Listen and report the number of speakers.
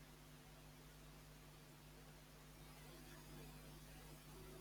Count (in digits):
0